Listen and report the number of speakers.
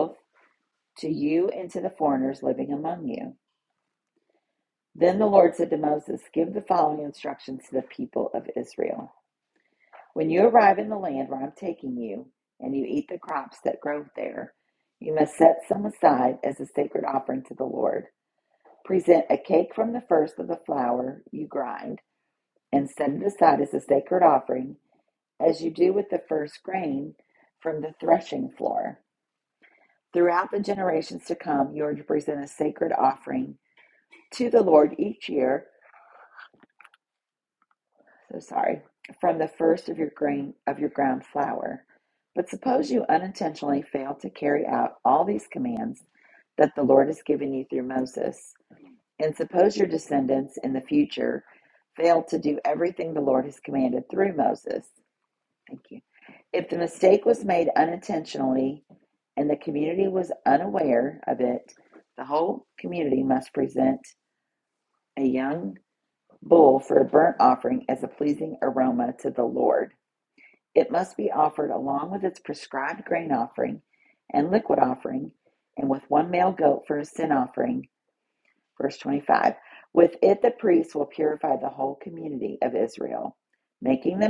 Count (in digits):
1